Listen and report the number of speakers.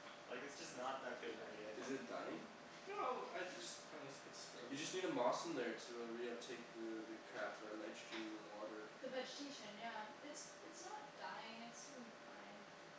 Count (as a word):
four